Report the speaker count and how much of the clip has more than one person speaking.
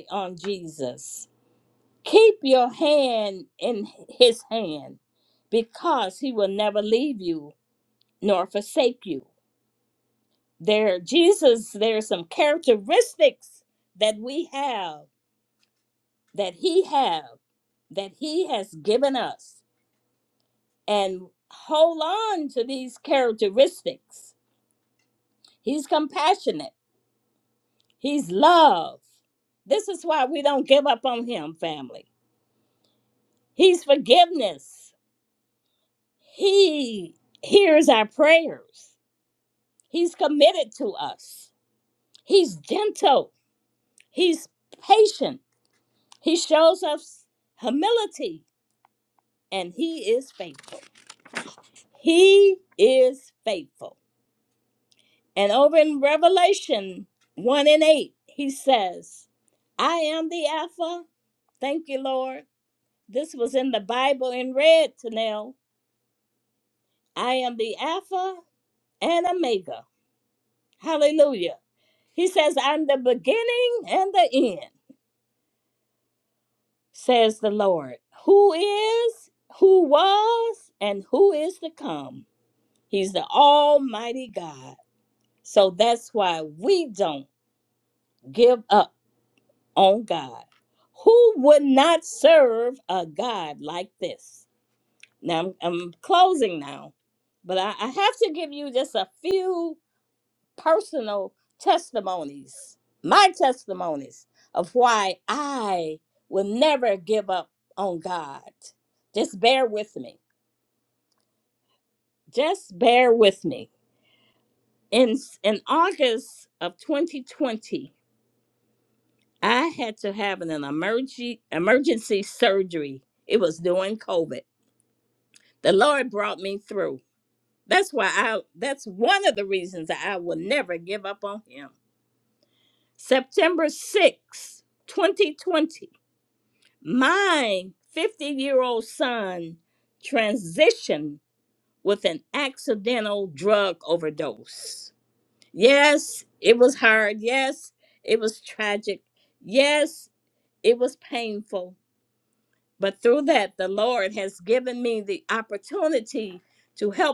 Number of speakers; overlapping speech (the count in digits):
1, no overlap